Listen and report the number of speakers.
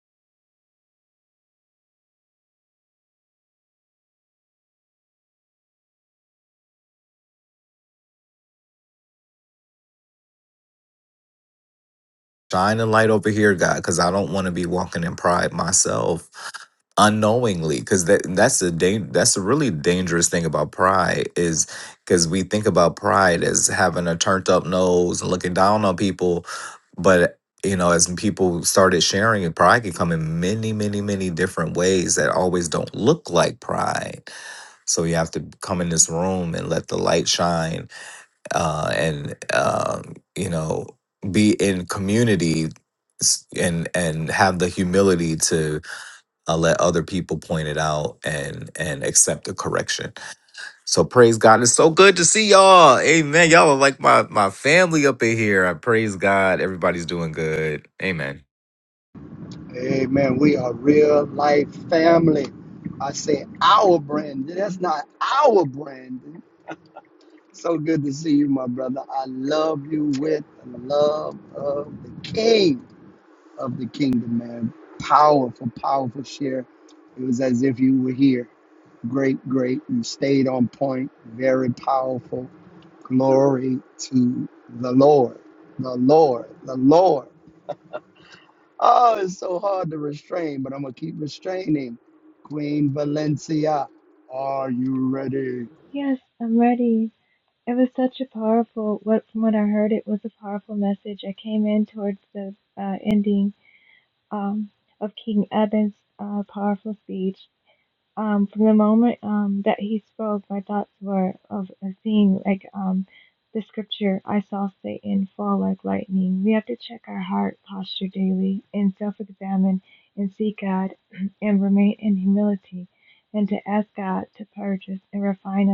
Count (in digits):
3